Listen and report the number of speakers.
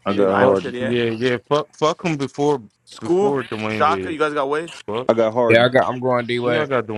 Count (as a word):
four